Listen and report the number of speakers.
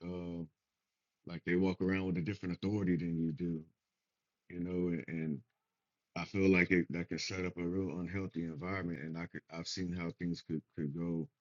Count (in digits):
1